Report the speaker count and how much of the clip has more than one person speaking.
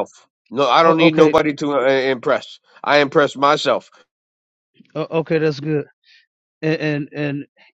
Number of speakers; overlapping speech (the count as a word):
two, about 7%